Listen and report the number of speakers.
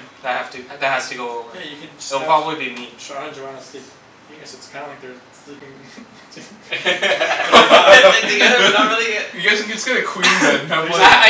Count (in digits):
4